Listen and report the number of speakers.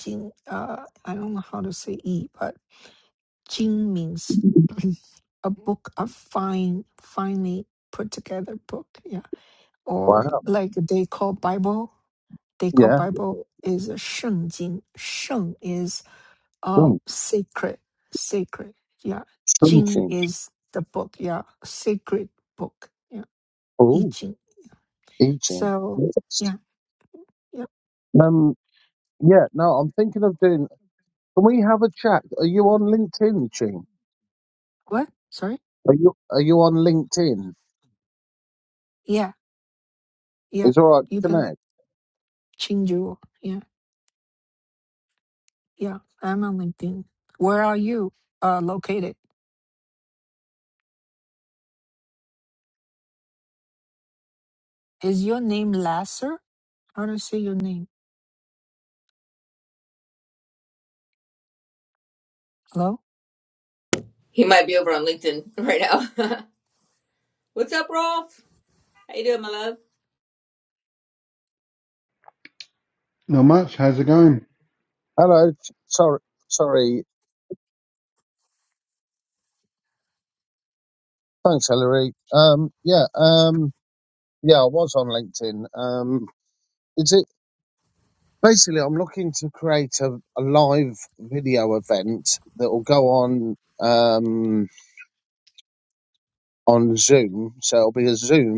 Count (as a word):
four